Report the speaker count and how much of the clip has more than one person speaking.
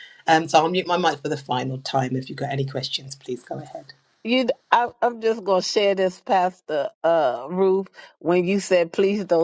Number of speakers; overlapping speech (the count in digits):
2, no overlap